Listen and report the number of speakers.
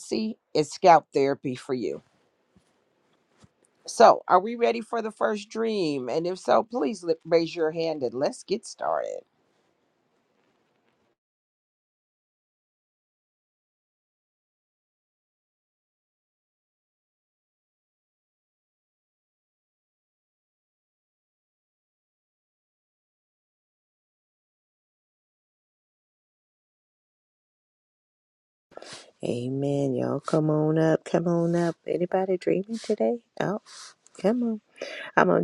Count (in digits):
2